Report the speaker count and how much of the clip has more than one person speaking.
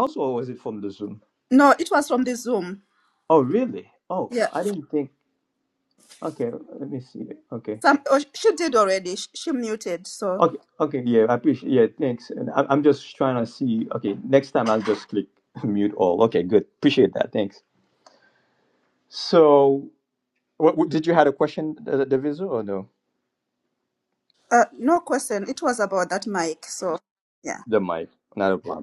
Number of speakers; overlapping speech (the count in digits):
2, about 1%